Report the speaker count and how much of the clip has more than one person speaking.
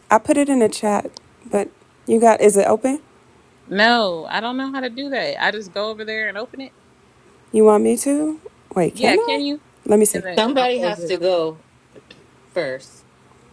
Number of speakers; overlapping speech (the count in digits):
3, about 10%